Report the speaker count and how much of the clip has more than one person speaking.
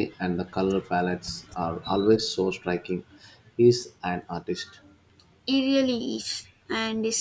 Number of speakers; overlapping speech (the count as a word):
two, no overlap